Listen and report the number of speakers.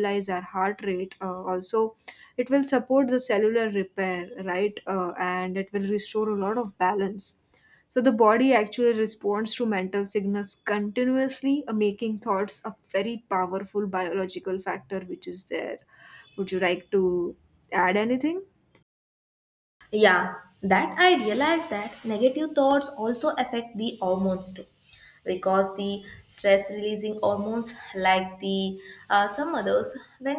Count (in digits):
2